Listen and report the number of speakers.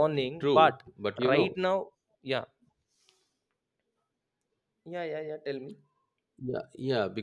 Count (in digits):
2